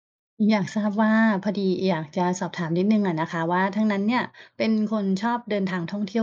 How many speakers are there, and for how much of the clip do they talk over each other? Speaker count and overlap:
one, no overlap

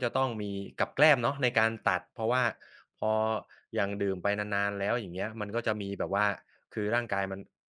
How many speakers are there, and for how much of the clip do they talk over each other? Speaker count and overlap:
one, no overlap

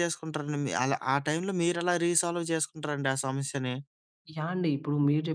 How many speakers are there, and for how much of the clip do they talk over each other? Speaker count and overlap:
two, no overlap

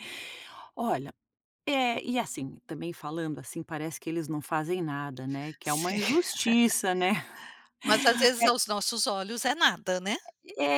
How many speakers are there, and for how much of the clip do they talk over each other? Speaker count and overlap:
two, about 4%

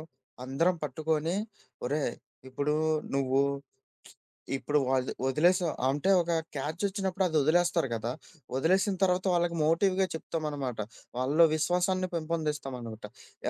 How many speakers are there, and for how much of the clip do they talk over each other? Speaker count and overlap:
one, no overlap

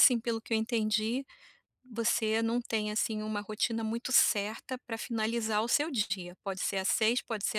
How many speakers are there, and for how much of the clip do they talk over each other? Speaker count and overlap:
one, no overlap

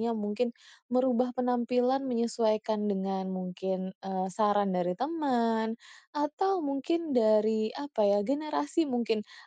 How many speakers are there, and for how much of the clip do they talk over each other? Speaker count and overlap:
one, no overlap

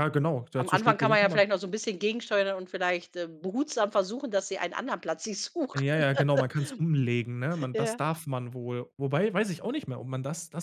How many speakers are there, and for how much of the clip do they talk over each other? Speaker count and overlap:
two, about 11%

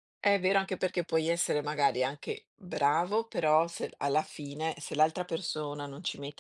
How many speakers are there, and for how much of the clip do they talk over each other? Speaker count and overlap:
one, no overlap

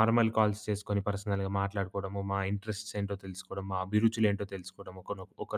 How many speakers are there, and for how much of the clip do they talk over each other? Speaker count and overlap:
one, no overlap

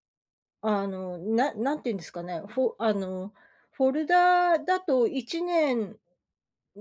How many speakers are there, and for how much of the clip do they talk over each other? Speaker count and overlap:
one, no overlap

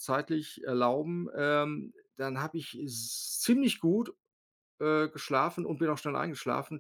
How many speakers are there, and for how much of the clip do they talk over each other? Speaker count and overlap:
one, no overlap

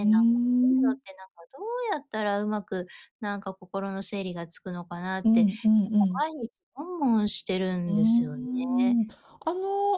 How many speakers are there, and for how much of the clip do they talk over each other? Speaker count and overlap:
two, about 22%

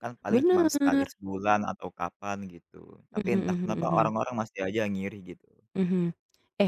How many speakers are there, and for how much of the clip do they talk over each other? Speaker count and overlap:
two, about 26%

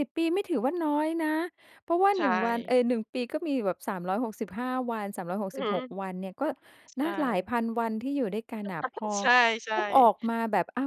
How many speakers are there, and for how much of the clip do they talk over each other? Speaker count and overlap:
two, about 5%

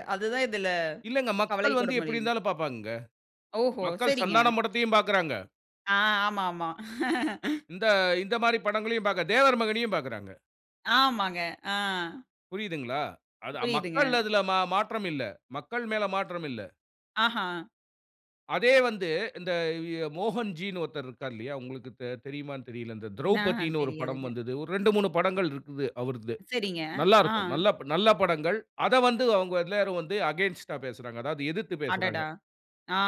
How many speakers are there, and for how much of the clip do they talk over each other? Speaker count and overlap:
two, about 10%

